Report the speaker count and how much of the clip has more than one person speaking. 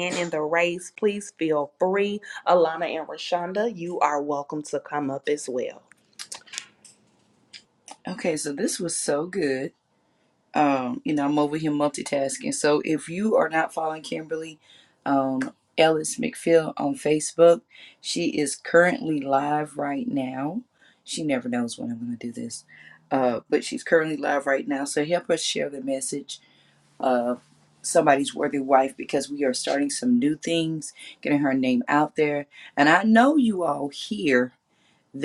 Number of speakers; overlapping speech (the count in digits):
2, no overlap